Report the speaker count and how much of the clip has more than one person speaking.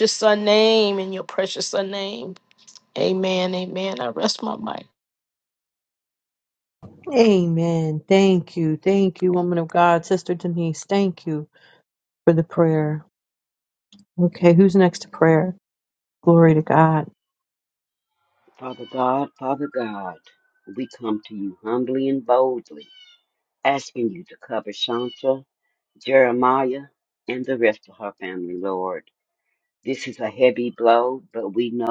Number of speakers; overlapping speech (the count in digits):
3, no overlap